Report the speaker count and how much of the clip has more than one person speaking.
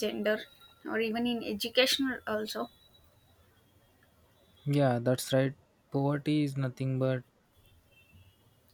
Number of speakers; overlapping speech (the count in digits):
2, no overlap